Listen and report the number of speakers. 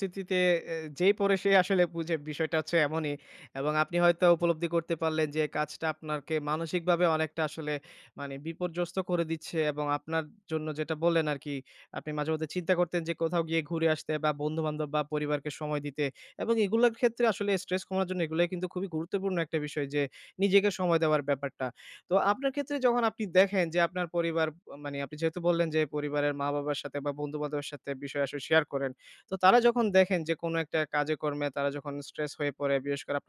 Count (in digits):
1